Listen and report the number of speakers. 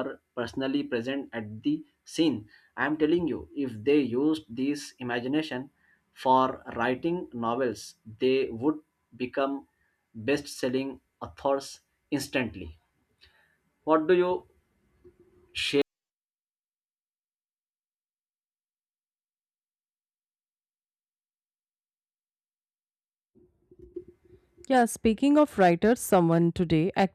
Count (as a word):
two